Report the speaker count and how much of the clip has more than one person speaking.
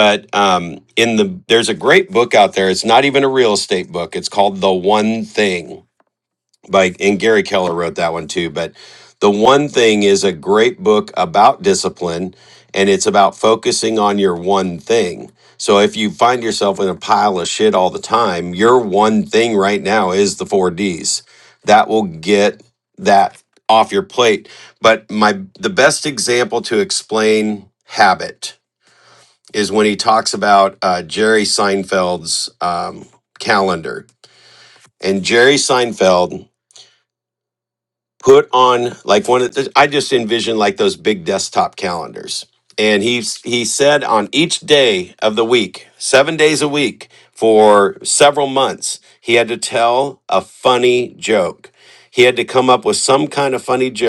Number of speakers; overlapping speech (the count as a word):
one, no overlap